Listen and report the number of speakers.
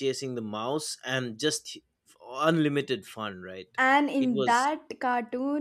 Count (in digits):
2